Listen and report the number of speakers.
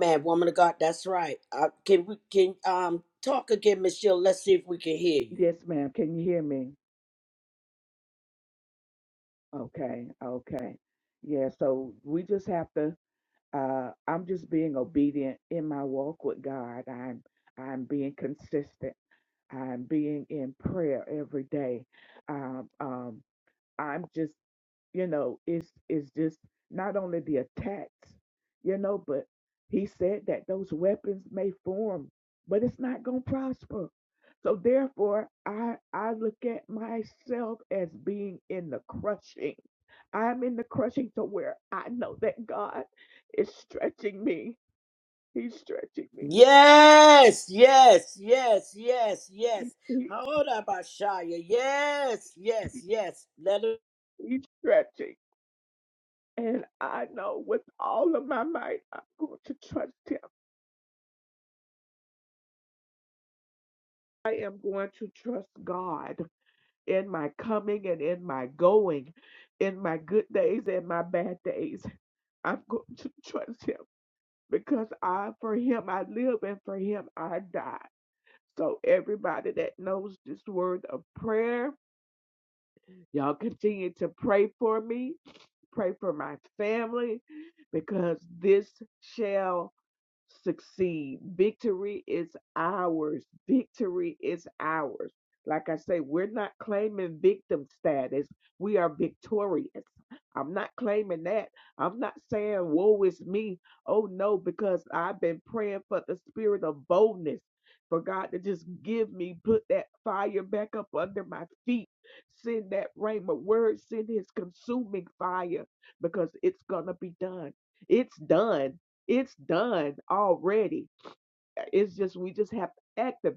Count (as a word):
two